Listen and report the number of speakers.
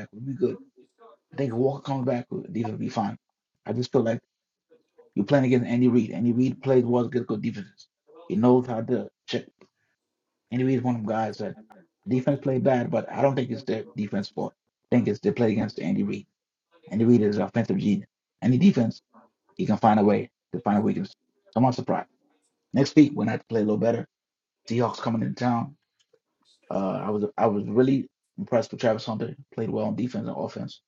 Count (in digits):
1